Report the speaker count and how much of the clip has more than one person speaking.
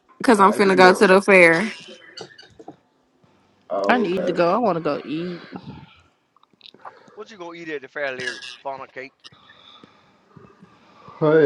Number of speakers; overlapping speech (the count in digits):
4, about 10%